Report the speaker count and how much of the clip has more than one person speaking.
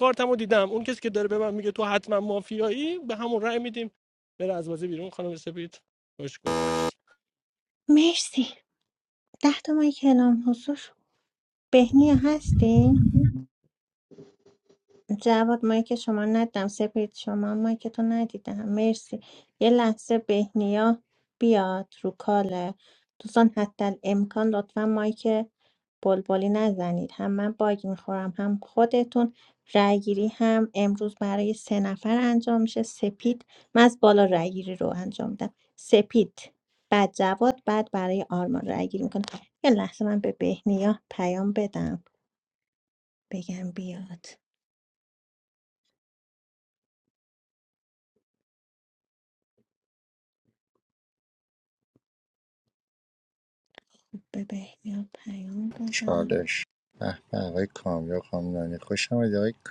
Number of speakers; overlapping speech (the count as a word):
three, about 1%